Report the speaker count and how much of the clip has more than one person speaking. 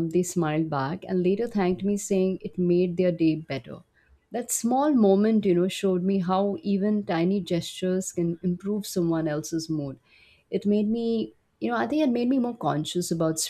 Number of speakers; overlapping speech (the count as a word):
one, no overlap